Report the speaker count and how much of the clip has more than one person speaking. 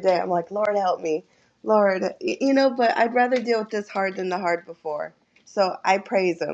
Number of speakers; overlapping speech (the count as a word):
one, no overlap